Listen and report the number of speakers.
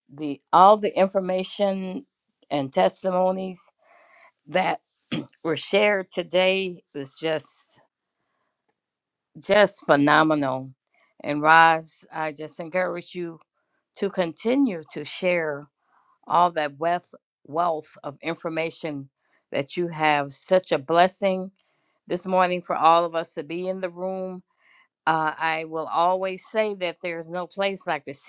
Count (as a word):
one